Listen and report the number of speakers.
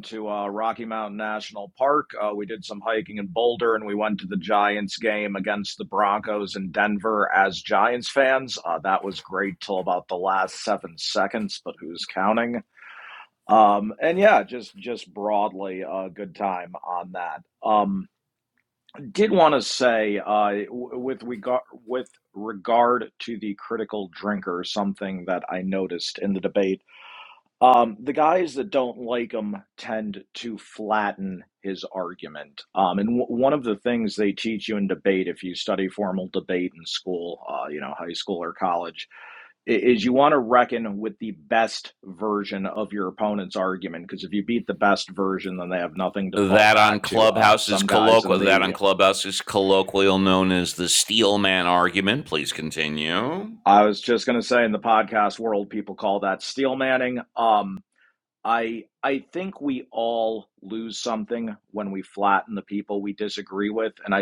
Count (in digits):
2